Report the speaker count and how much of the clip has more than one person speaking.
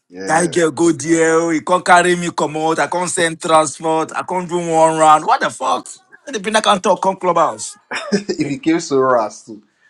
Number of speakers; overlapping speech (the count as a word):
two, about 3%